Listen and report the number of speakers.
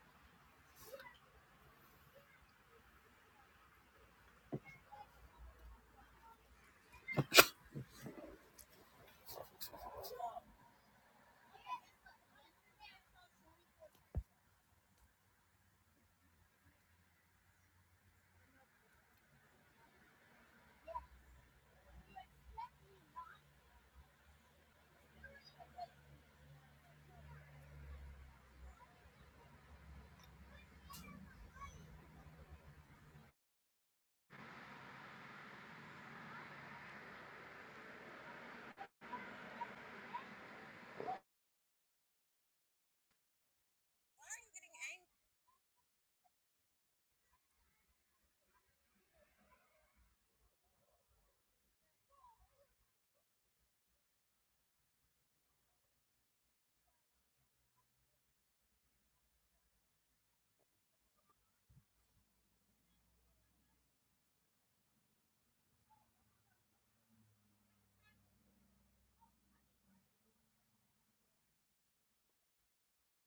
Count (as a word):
zero